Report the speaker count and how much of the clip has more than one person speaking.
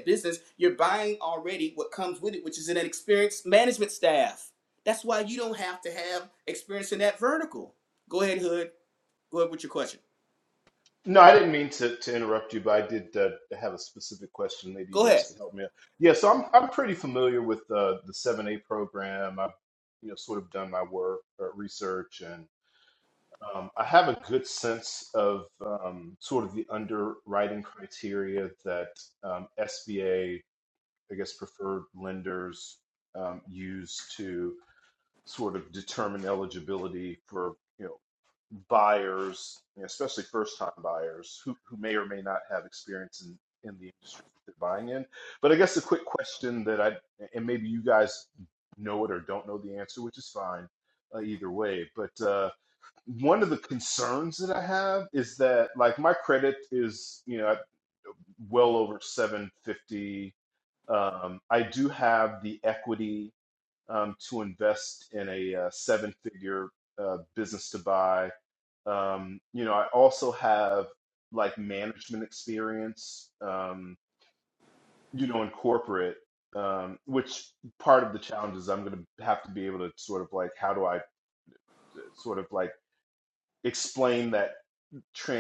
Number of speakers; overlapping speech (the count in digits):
2, under 1%